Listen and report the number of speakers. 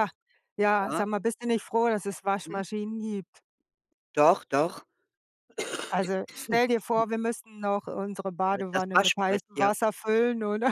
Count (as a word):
two